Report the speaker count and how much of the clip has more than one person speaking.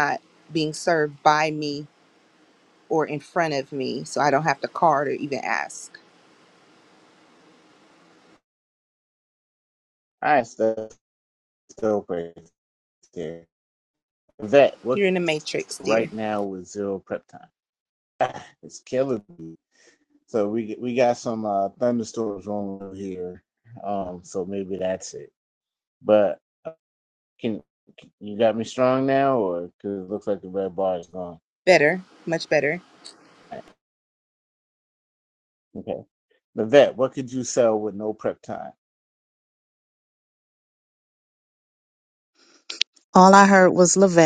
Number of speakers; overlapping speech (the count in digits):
3, about 1%